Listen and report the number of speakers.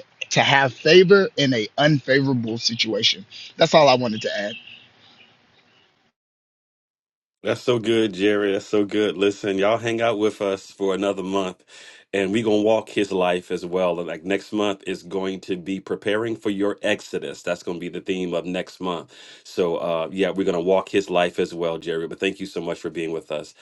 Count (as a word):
two